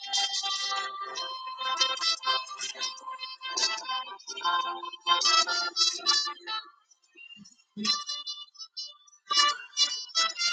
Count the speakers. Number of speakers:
zero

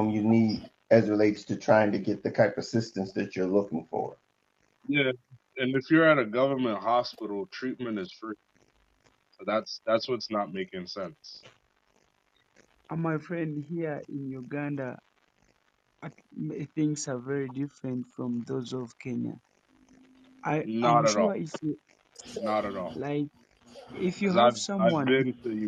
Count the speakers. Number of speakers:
three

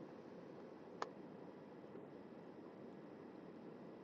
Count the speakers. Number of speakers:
zero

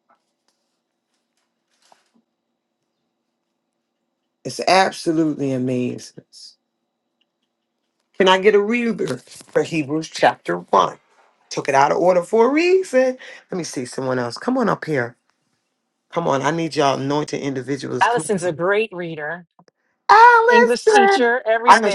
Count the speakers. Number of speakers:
two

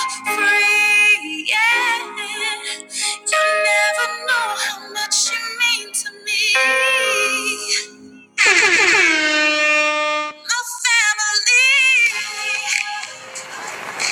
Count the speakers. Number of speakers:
one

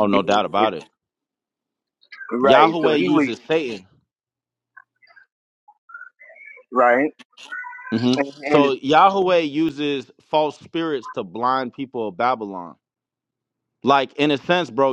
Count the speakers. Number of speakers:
two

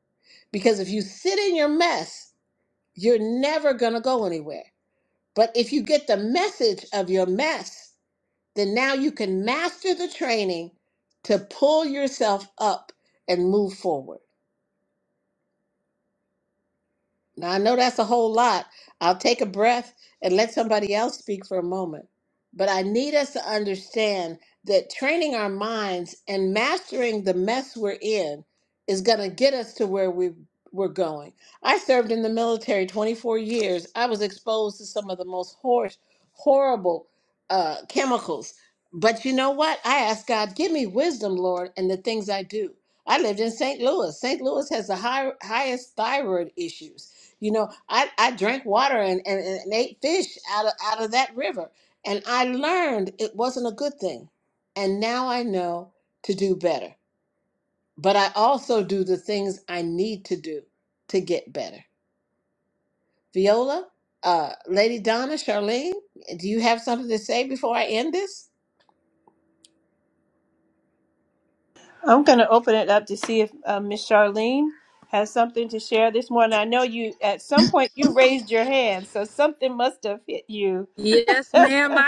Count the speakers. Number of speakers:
three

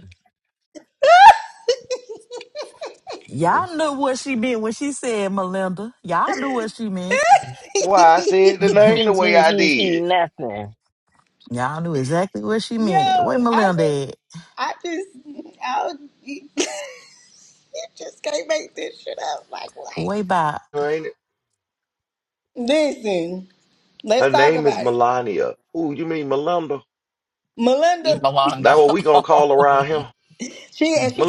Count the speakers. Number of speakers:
four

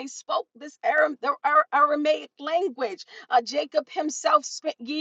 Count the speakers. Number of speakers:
one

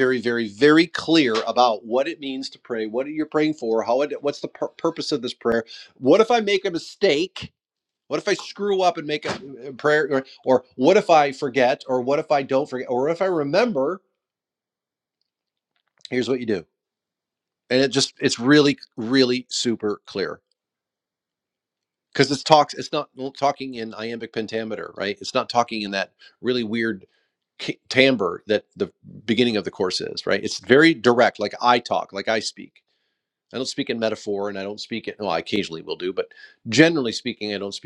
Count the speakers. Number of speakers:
one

